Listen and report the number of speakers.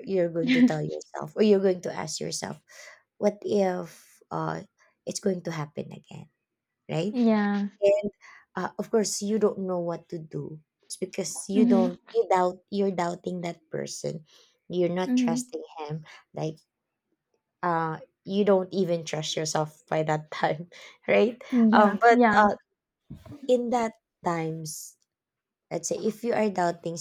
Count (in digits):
2